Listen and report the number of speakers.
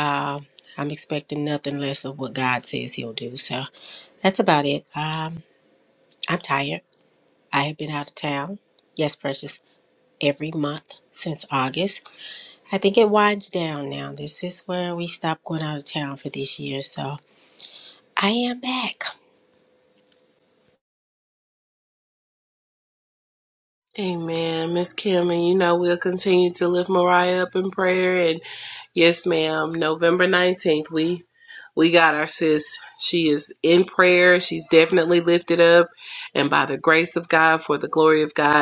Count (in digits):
2